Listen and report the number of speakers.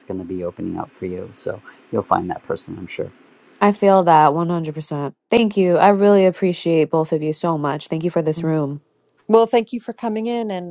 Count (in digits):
3